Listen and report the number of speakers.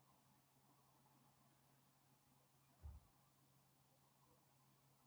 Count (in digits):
0